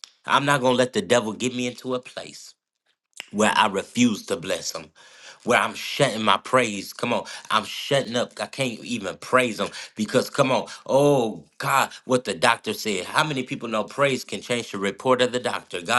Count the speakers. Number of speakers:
one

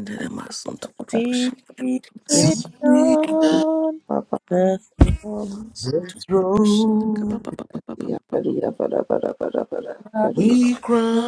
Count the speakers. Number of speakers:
four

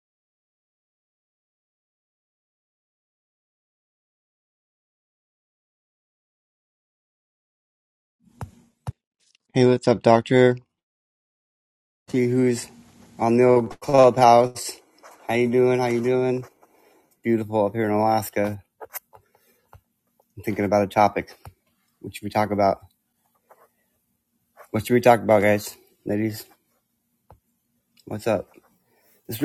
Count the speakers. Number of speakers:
one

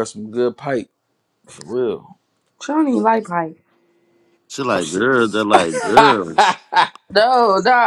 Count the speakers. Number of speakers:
three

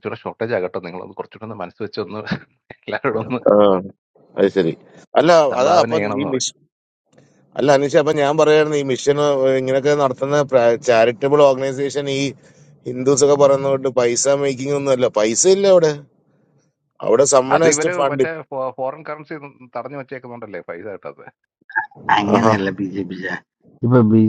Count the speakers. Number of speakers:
three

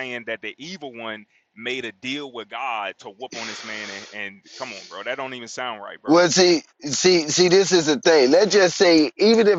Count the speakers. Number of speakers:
two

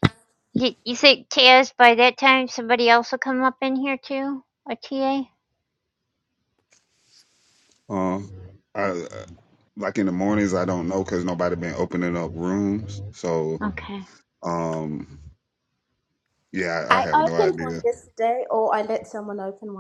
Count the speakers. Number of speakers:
three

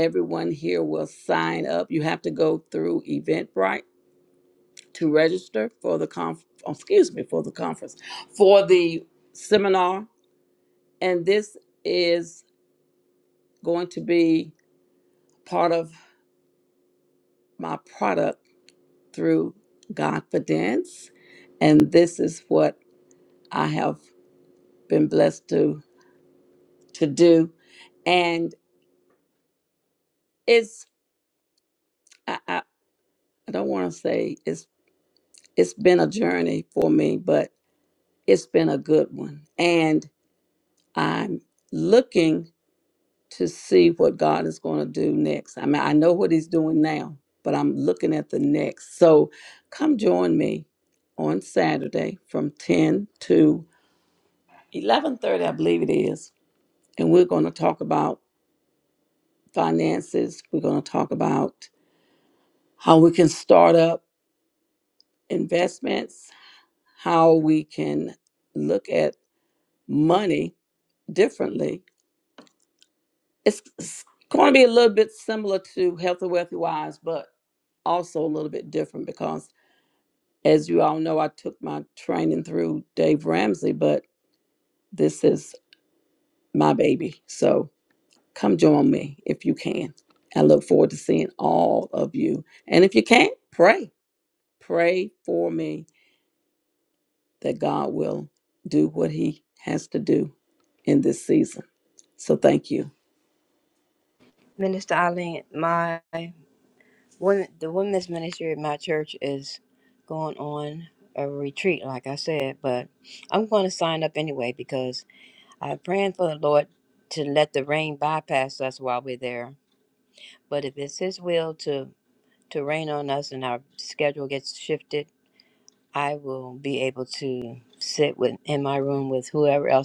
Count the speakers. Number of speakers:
two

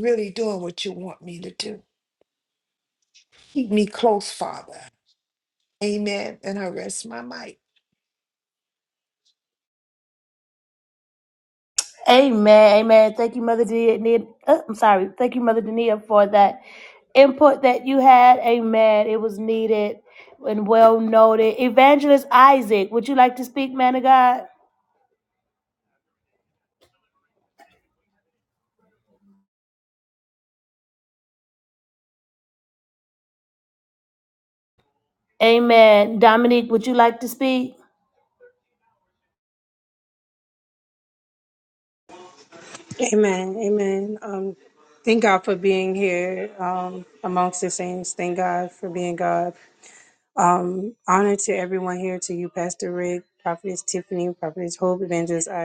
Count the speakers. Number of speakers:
three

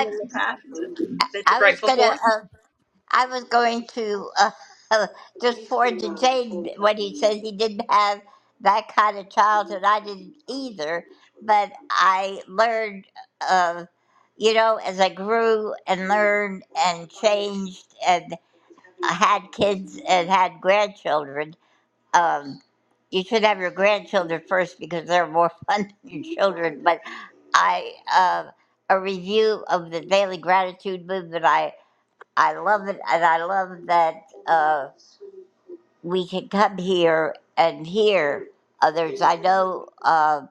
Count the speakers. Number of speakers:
two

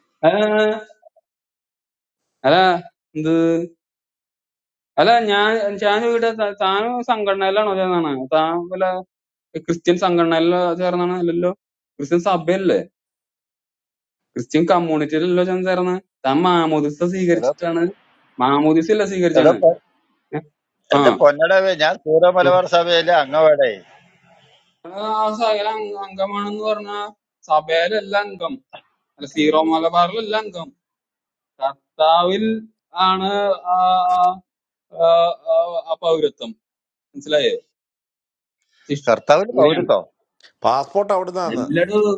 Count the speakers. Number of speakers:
three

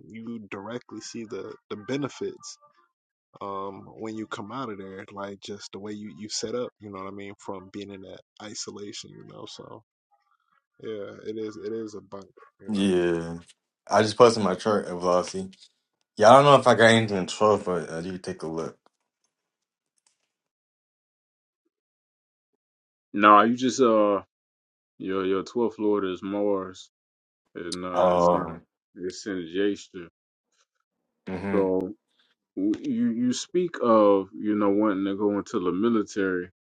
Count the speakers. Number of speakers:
three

